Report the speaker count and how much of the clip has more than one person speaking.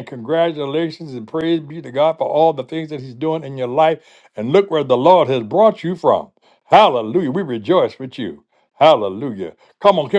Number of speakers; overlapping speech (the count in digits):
1, no overlap